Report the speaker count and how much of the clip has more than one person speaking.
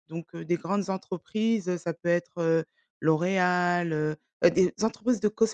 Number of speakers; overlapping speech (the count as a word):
one, no overlap